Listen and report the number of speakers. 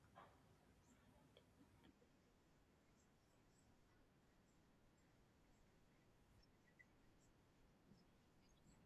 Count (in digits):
0